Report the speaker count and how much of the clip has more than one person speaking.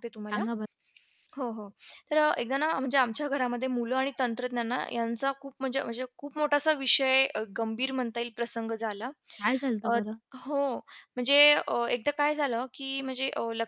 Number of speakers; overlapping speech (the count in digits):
2, about 2%